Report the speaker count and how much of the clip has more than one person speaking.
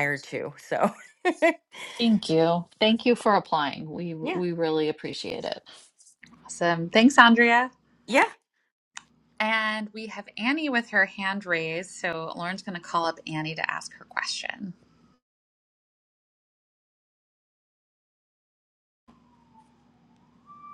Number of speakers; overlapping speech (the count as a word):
three, about 1%